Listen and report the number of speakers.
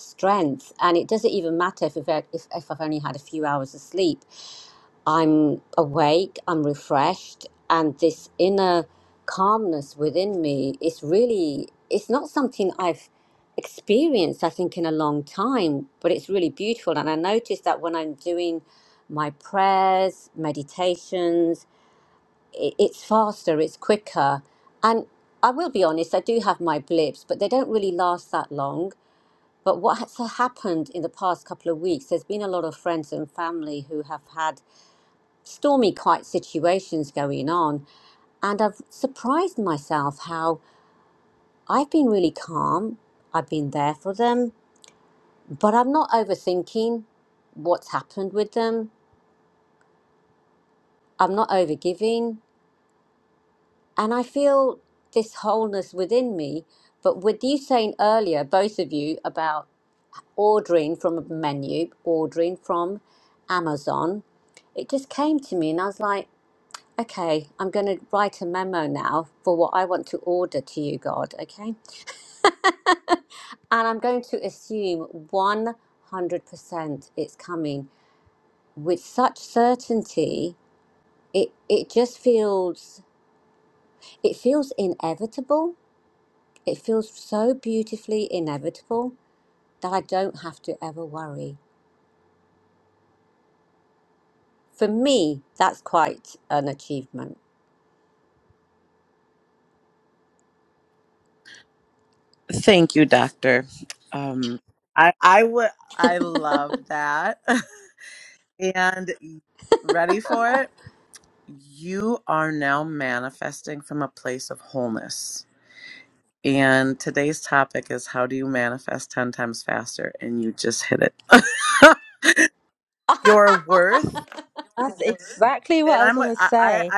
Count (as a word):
three